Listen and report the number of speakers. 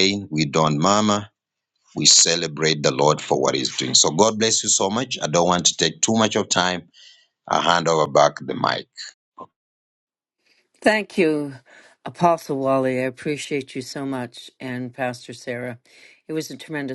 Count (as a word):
two